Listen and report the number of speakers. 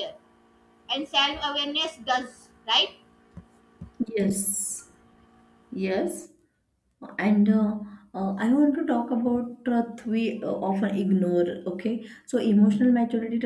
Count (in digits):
2